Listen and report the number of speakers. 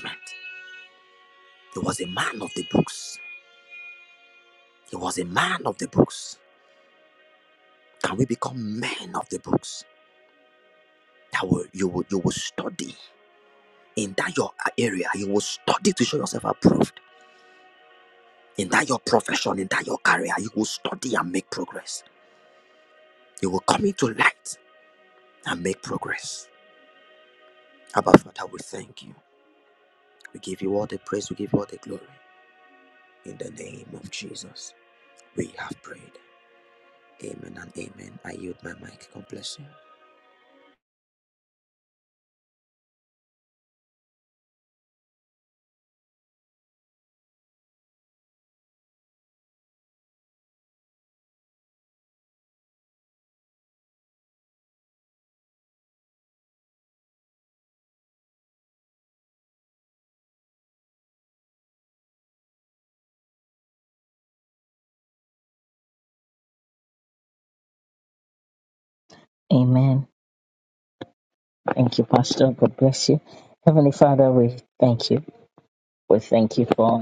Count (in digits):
2